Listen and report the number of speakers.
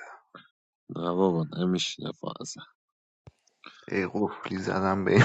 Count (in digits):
2